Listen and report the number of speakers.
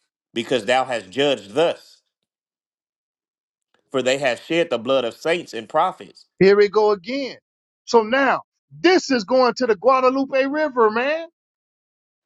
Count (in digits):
2